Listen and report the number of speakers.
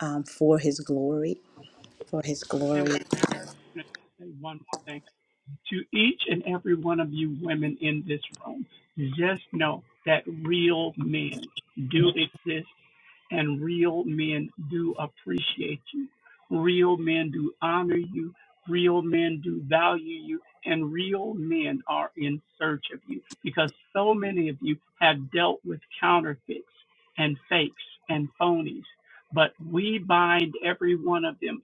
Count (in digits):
2